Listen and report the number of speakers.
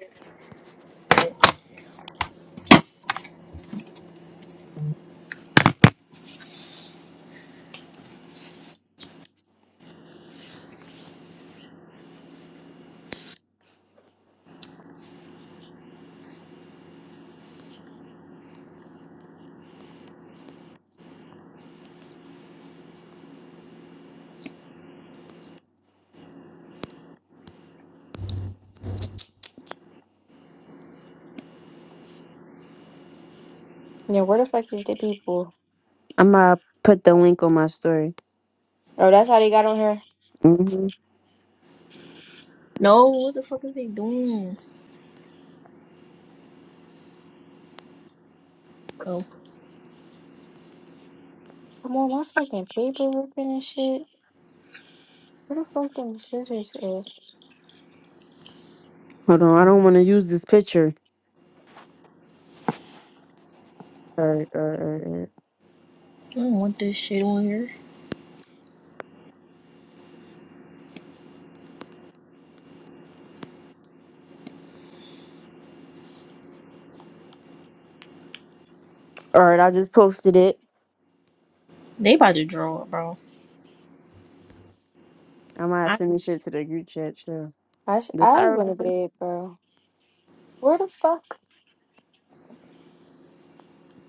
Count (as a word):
three